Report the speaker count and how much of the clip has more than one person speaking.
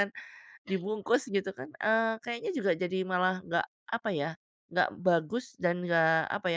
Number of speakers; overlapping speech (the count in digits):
1, no overlap